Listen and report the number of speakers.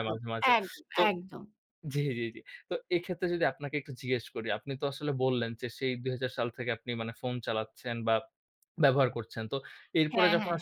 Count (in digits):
2